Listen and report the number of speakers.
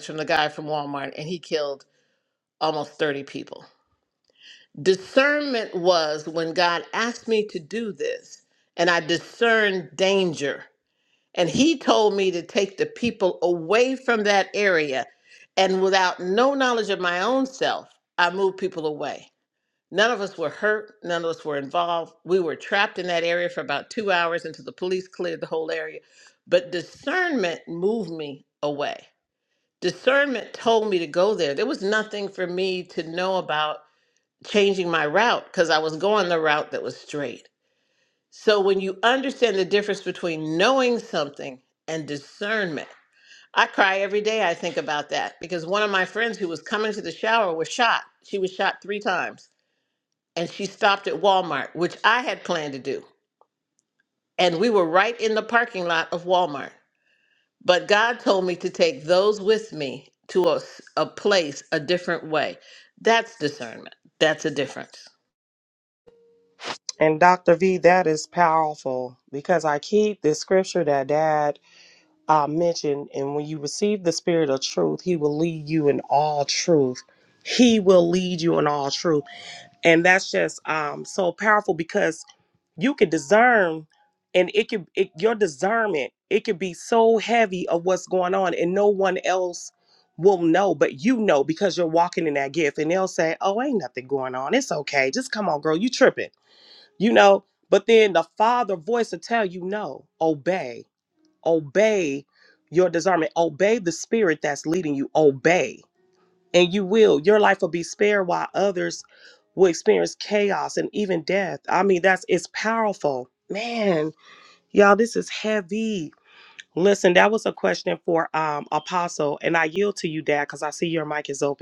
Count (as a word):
two